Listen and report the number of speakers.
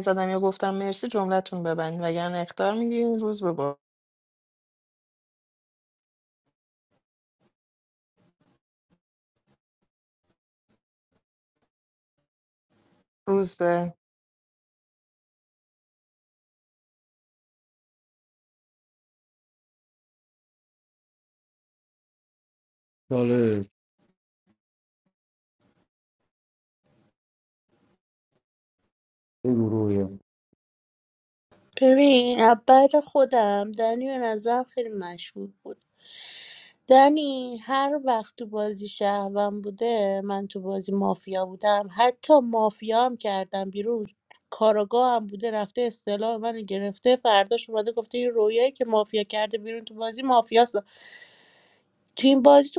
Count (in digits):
3